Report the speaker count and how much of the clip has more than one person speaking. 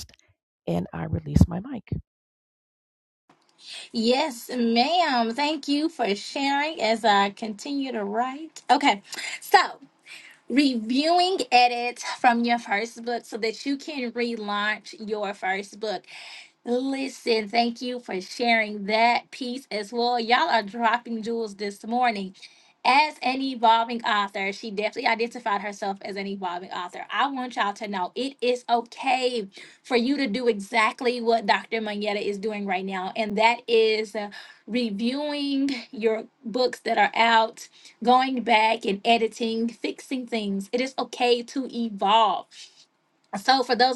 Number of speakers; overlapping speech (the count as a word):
two, no overlap